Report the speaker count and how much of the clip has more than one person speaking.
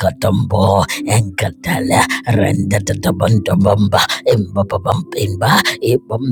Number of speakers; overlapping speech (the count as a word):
one, no overlap